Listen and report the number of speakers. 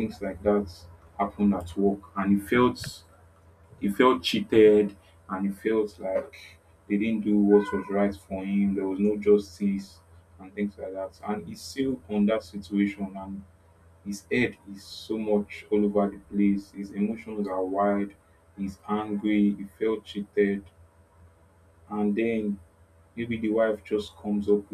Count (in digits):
1